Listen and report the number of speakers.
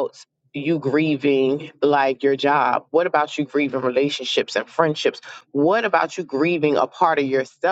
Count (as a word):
one